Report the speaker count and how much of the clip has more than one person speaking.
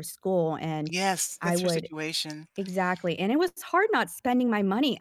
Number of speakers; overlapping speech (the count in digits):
2, about 10%